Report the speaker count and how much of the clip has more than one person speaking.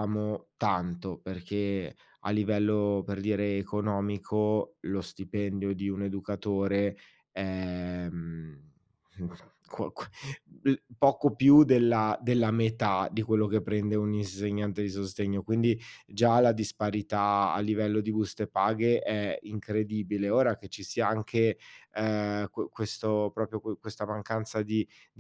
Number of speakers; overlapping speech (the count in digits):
1, no overlap